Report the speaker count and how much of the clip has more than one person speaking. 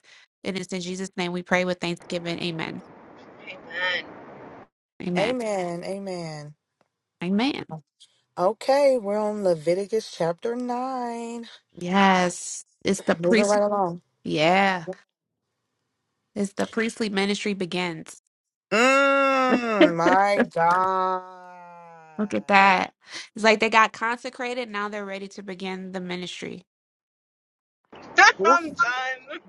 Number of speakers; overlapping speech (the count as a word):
three, about 4%